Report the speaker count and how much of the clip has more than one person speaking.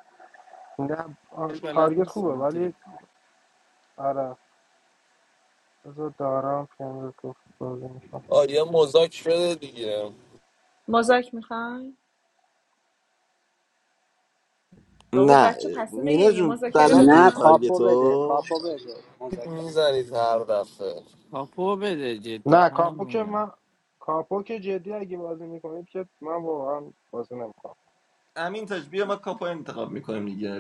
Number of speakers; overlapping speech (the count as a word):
six, about 16%